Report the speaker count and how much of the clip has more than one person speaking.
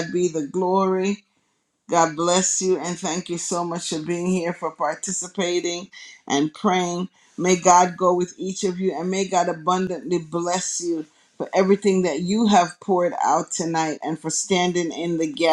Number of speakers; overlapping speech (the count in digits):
1, no overlap